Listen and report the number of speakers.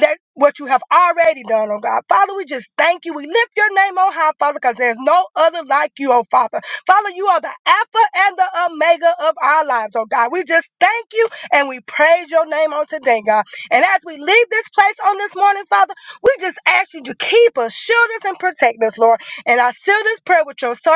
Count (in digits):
1